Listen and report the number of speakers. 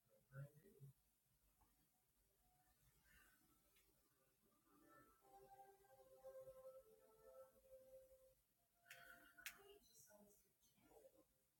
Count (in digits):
0